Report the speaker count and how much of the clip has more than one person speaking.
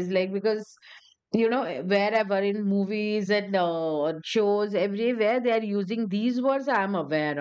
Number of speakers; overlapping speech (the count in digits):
1, no overlap